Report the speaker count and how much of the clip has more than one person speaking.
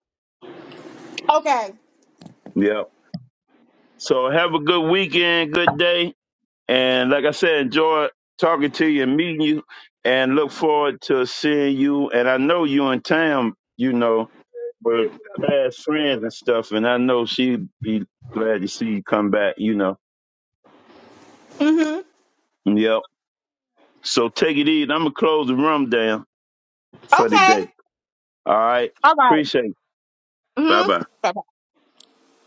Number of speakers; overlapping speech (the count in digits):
2, about 3%